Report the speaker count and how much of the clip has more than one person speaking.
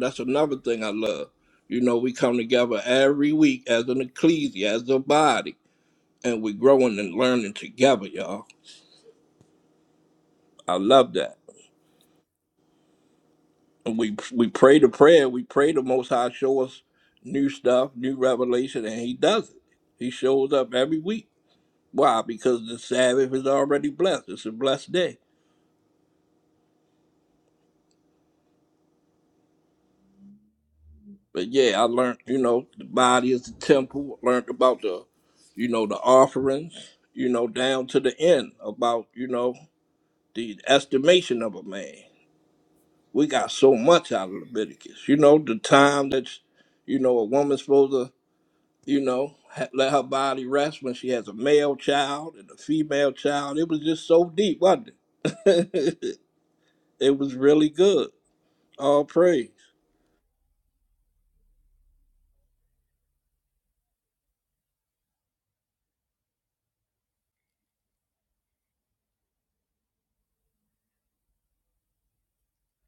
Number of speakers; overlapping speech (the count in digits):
1, no overlap